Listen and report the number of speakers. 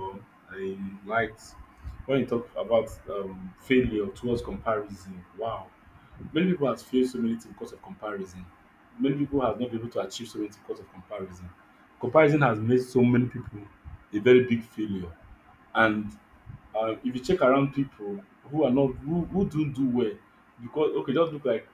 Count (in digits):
1